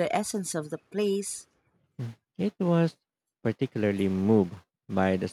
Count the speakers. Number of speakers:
two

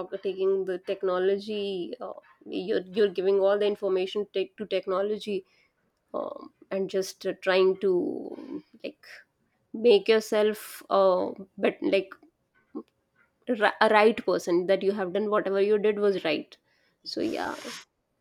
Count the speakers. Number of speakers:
one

